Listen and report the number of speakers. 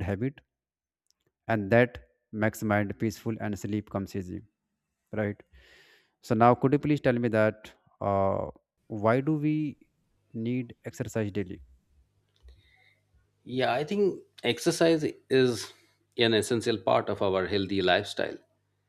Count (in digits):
2